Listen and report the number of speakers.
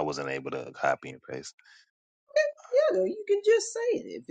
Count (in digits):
2